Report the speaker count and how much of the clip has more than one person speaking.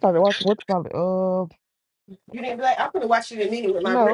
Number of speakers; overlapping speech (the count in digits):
2, about 7%